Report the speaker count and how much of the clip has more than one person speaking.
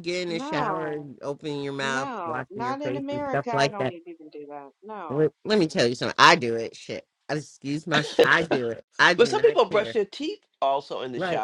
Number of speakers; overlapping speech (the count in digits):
3, about 40%